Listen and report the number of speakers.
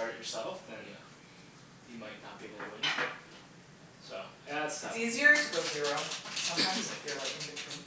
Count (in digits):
2